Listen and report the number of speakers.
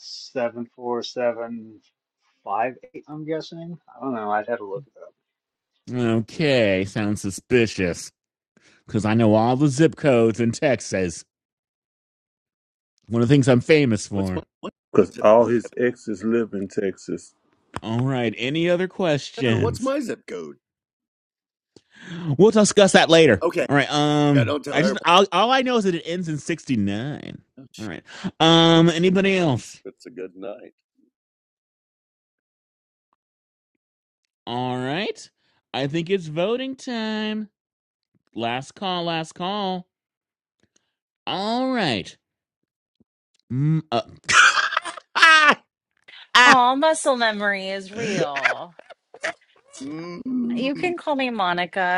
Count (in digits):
5